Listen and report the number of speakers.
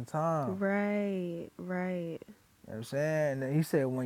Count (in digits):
2